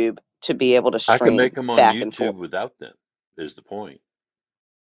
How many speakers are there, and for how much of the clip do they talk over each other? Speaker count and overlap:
two, about 26%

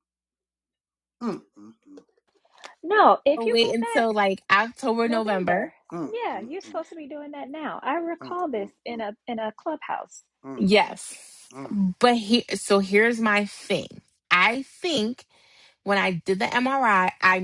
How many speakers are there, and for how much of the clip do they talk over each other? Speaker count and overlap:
three, about 17%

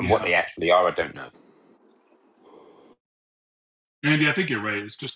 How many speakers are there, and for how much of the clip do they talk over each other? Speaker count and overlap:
two, about 7%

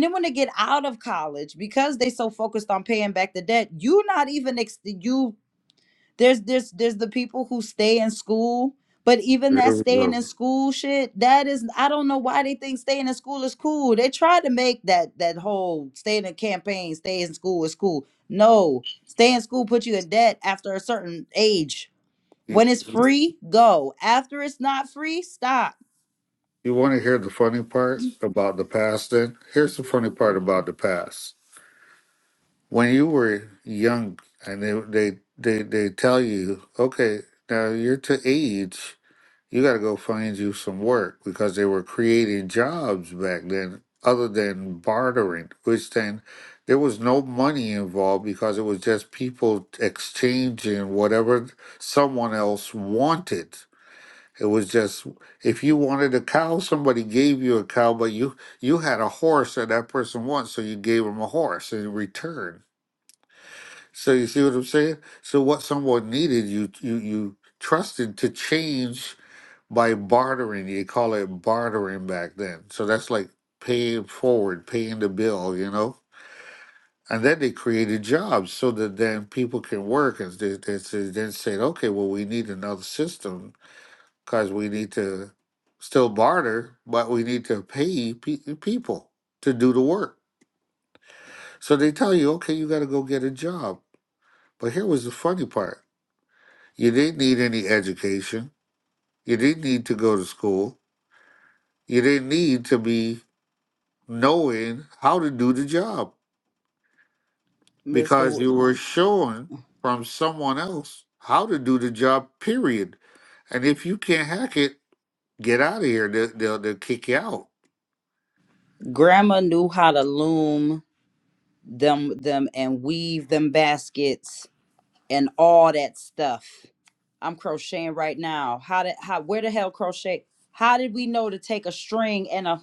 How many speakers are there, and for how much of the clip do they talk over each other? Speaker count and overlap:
two, about 1%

